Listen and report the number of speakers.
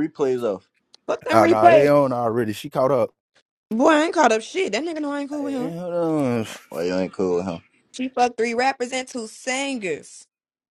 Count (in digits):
3